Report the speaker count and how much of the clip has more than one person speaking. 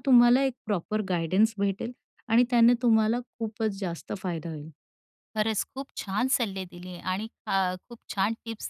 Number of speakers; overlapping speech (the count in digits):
2, no overlap